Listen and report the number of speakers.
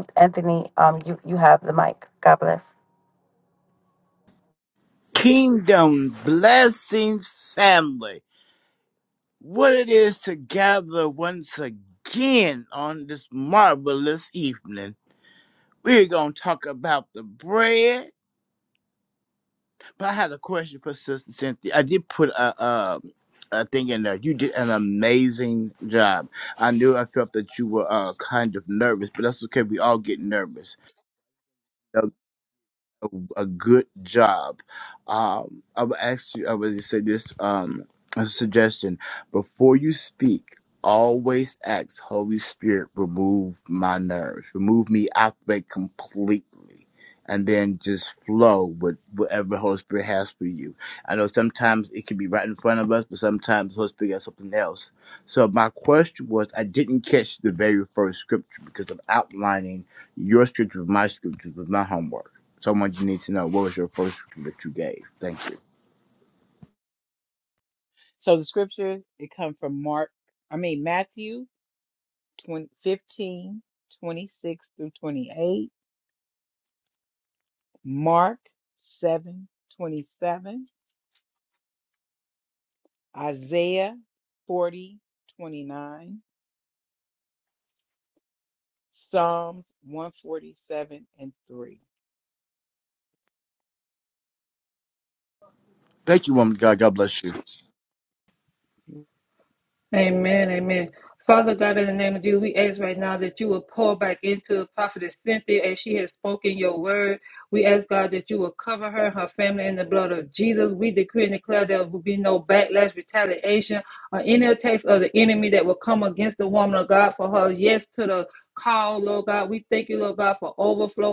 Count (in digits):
4